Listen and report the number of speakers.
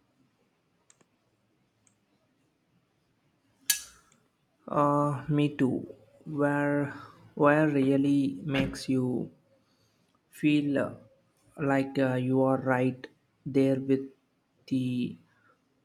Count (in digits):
1